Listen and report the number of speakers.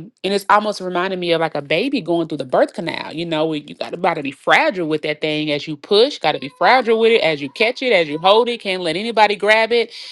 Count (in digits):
1